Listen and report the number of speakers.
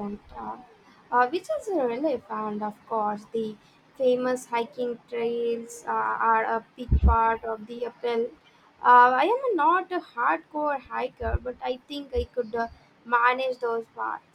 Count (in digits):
1